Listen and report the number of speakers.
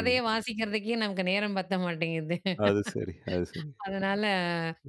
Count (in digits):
2